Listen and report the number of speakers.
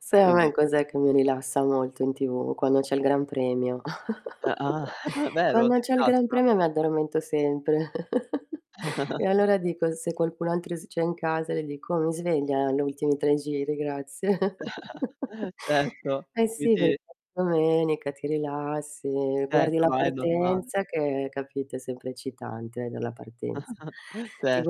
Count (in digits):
2